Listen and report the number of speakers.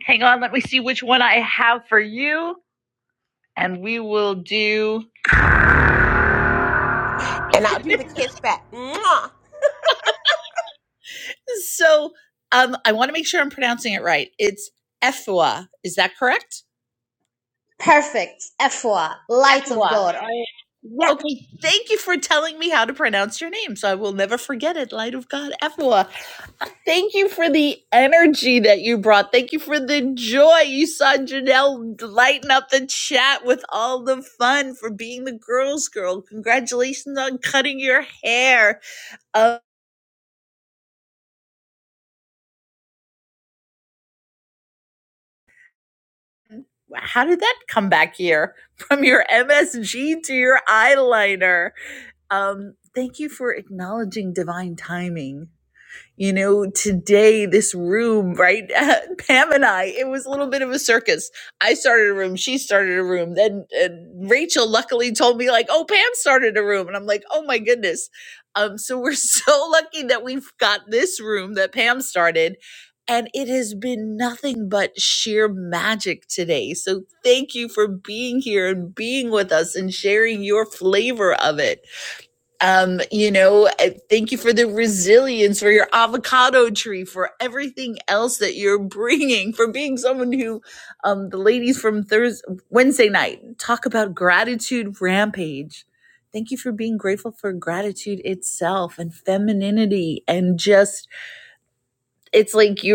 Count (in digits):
3